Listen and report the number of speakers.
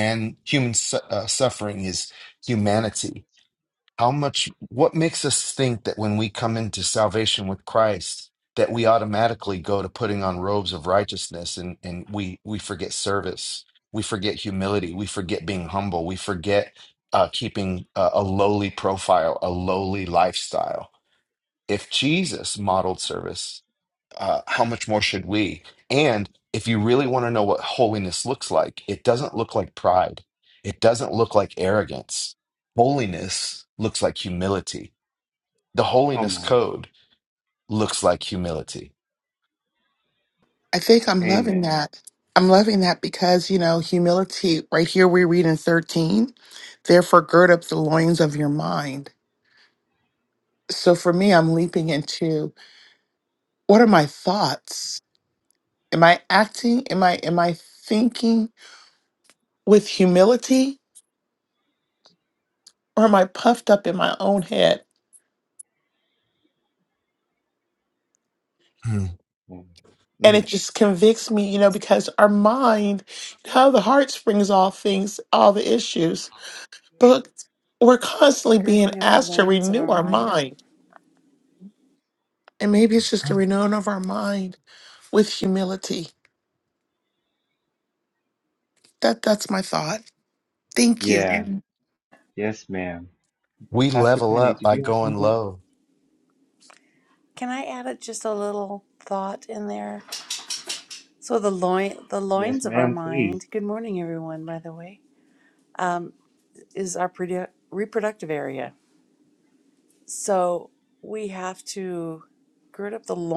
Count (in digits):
4